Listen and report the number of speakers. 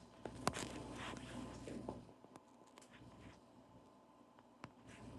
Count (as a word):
zero